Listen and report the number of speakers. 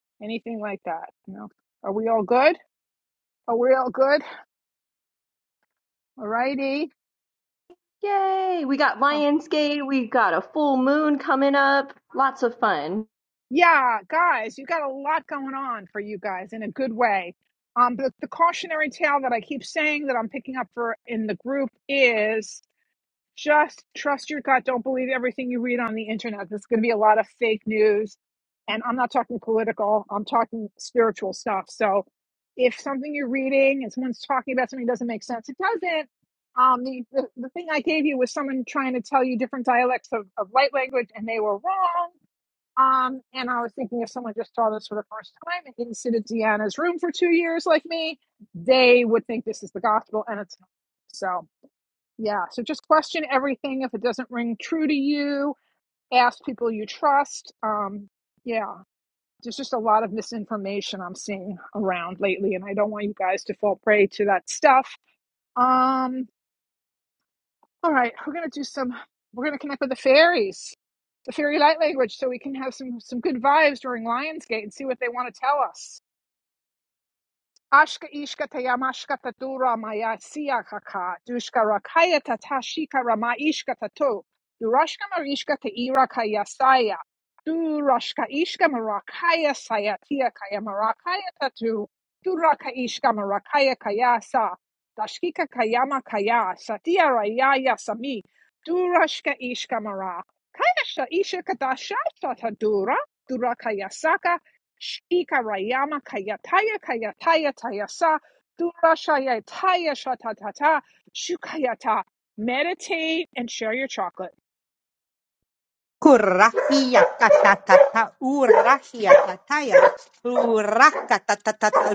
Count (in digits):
3